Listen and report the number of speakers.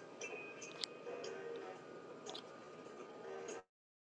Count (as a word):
zero